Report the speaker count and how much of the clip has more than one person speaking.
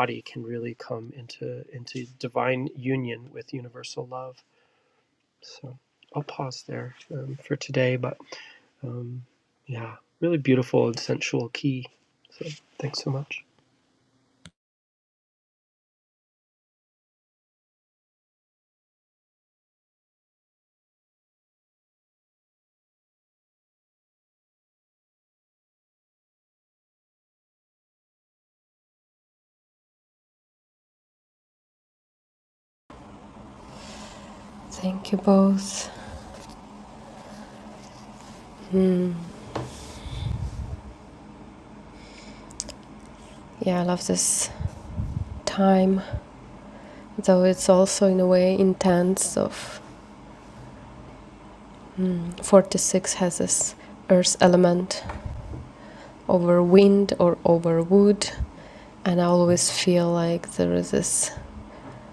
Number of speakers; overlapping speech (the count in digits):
2, no overlap